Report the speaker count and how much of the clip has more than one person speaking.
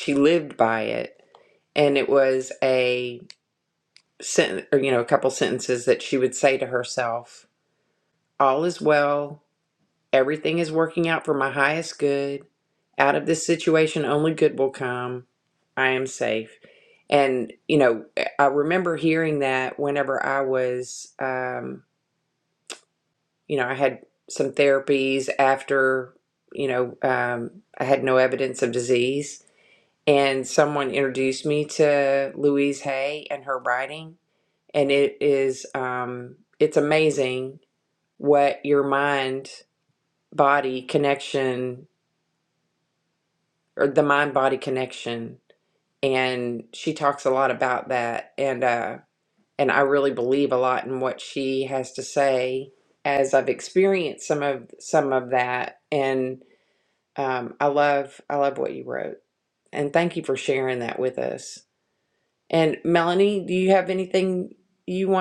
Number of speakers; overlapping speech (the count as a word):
one, no overlap